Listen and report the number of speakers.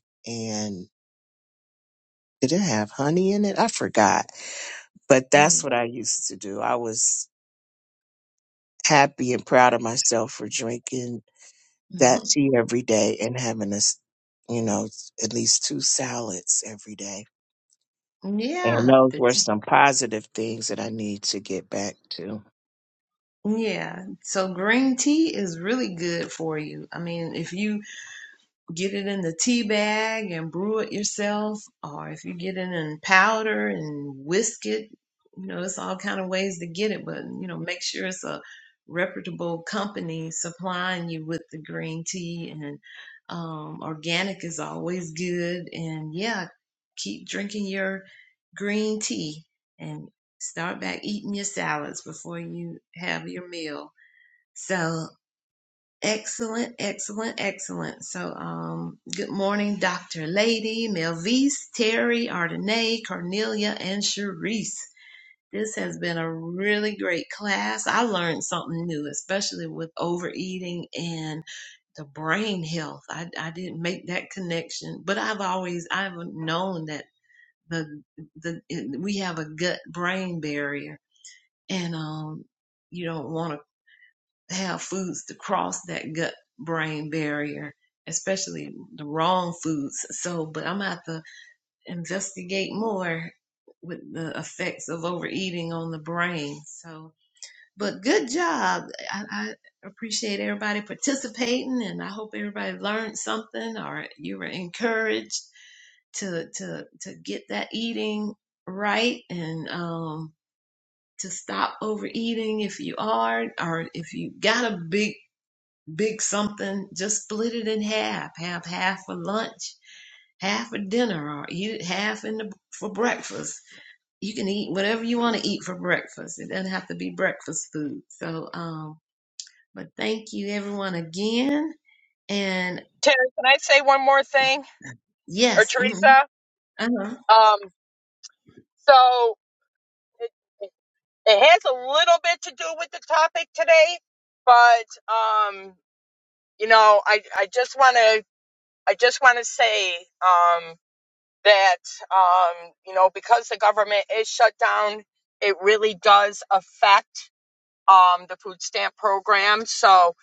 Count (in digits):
3